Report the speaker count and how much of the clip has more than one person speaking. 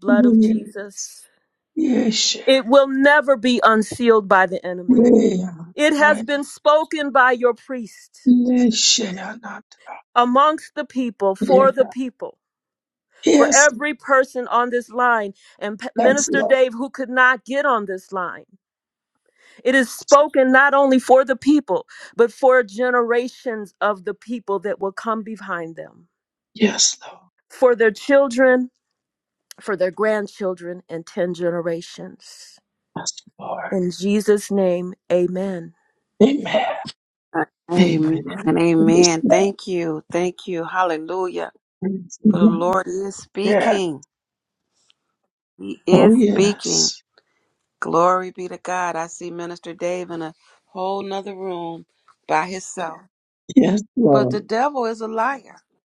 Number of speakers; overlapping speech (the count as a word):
three, about 11%